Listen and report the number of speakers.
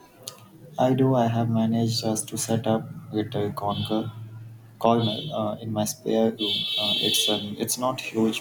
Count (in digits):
1